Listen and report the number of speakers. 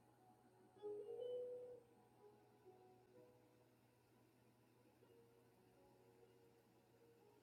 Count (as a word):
zero